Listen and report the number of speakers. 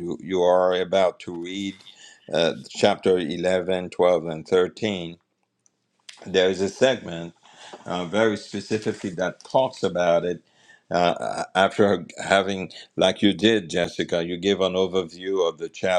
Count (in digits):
1